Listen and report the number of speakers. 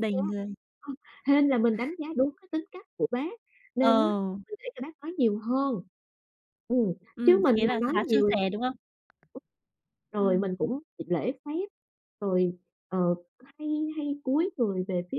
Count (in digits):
2